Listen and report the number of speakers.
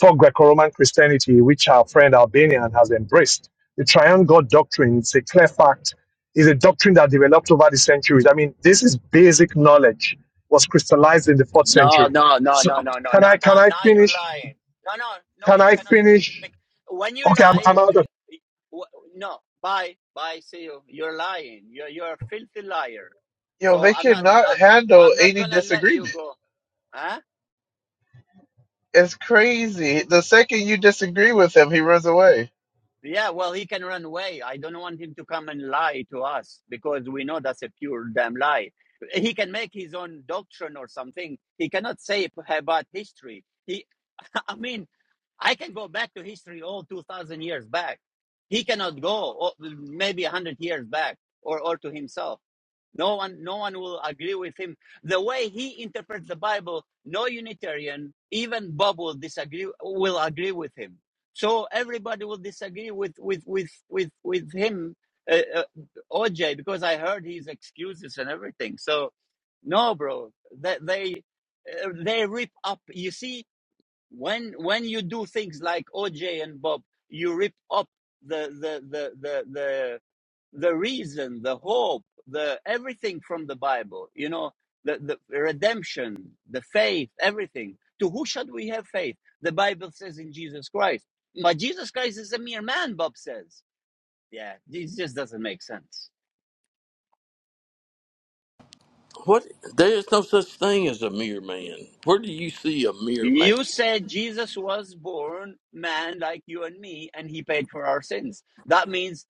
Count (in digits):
4